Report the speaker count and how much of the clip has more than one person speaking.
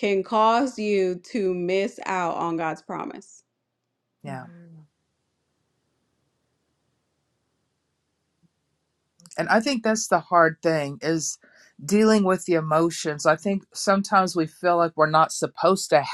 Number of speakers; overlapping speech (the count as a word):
two, no overlap